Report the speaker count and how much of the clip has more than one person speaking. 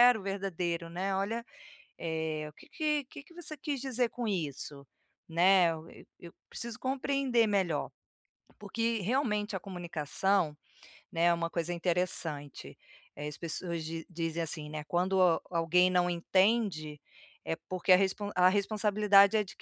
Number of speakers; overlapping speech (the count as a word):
one, no overlap